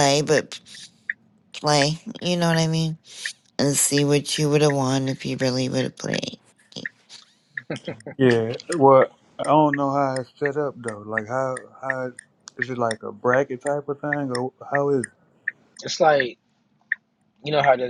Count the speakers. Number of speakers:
3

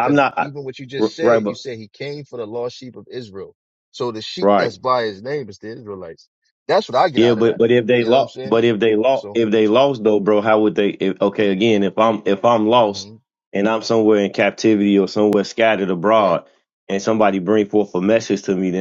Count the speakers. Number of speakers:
2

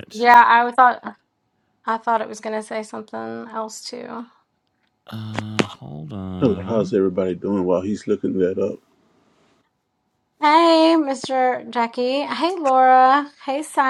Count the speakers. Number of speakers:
3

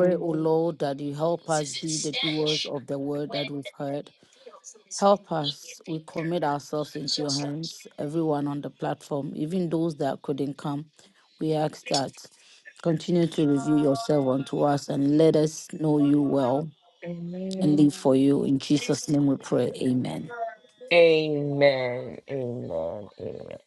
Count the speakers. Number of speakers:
2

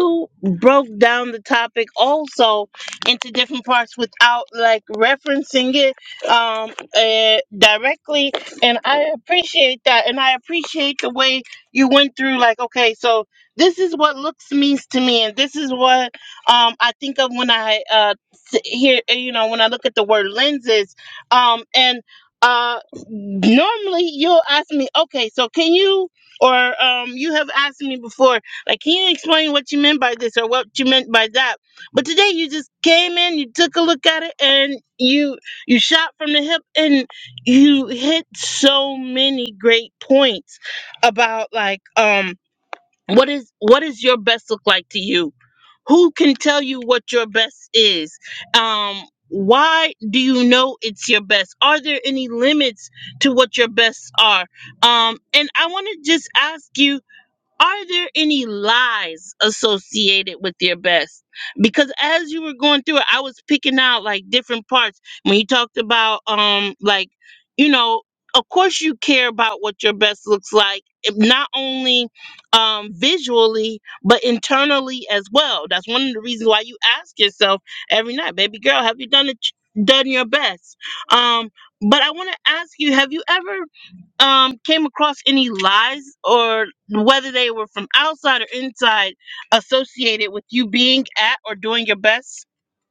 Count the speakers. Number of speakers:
1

